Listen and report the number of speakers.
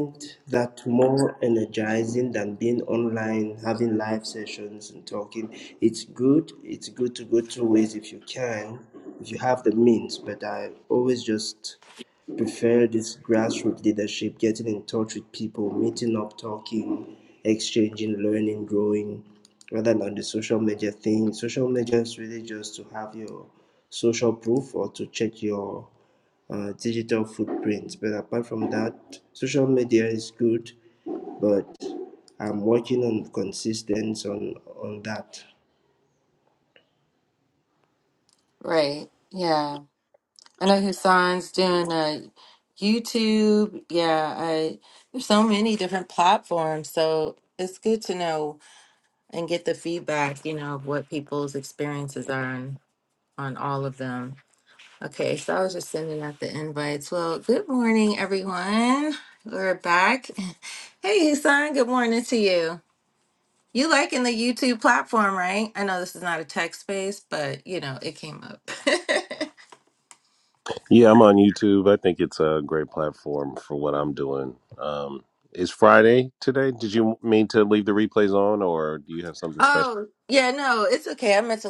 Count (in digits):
3